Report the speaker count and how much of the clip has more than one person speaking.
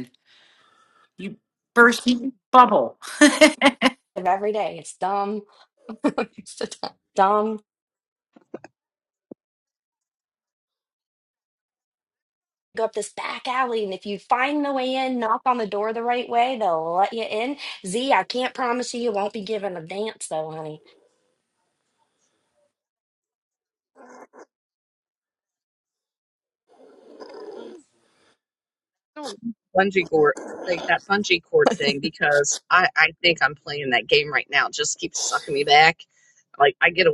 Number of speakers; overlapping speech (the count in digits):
3, no overlap